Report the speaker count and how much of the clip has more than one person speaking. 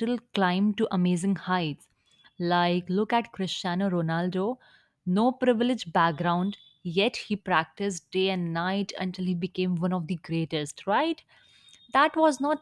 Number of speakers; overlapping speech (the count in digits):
1, no overlap